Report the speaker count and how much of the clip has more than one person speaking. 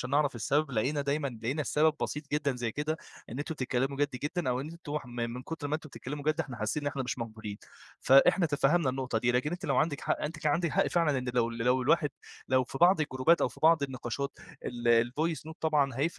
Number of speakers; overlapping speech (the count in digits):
1, no overlap